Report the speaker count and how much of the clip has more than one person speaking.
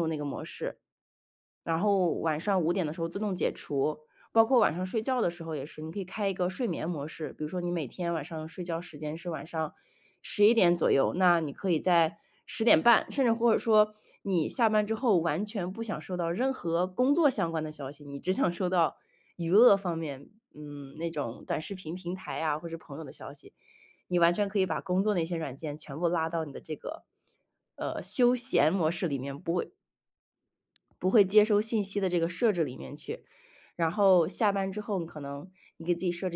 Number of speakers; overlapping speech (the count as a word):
one, no overlap